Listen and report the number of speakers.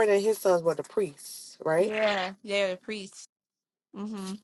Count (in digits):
2